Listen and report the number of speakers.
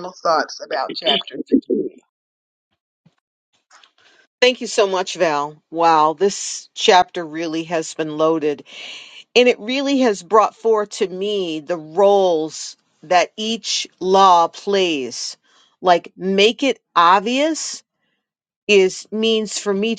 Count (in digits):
2